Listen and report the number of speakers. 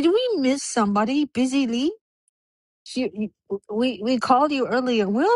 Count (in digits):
1